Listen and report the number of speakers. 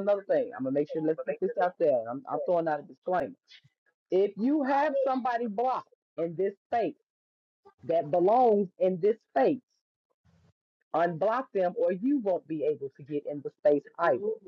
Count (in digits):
1